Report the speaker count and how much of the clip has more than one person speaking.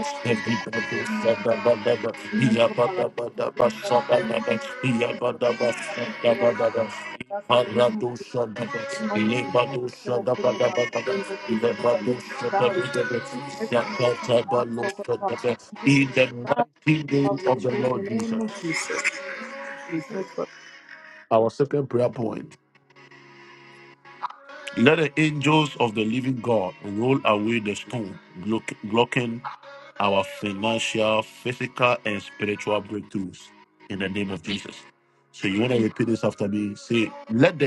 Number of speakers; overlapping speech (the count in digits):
2, about 25%